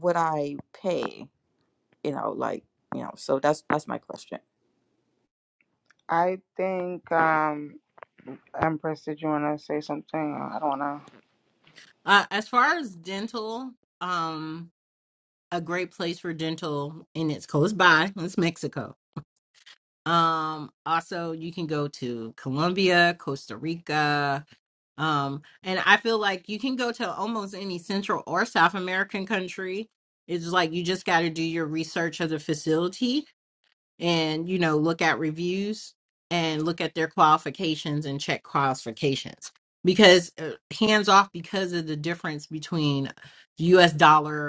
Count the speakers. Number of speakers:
3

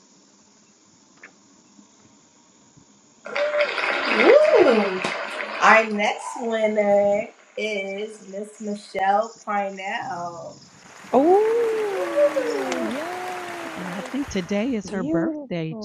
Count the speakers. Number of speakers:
3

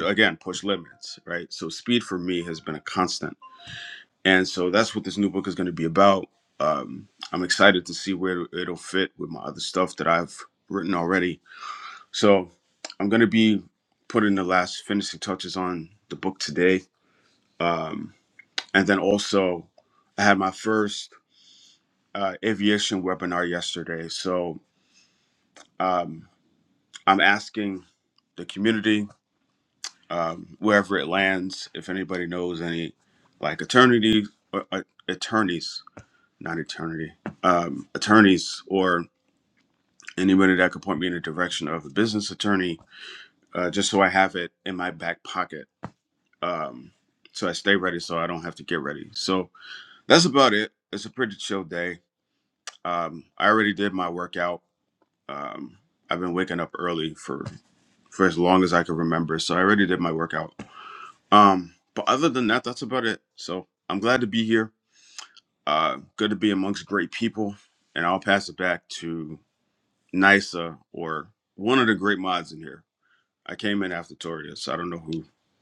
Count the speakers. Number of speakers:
1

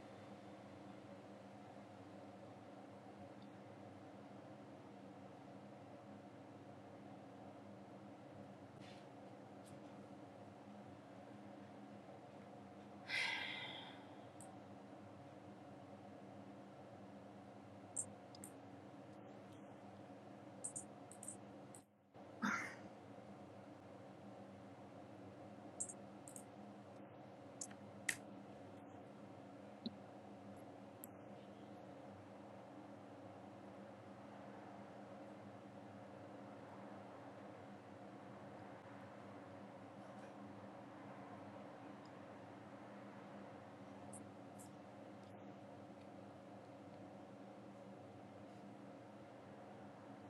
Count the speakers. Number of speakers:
0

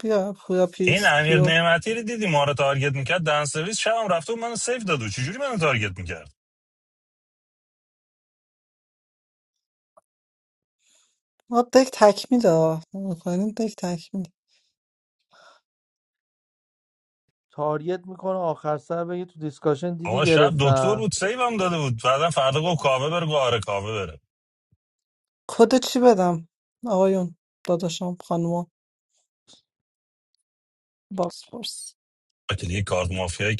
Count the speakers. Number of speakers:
3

